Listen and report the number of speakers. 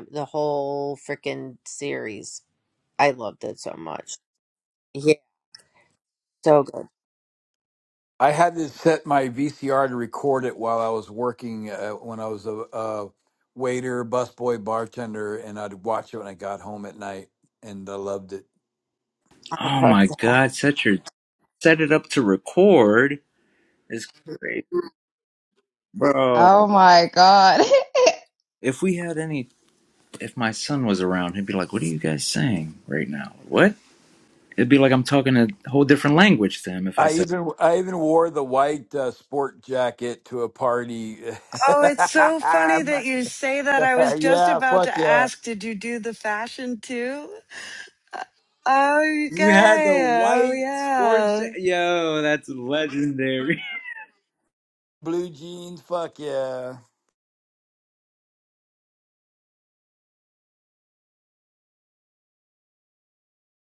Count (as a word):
five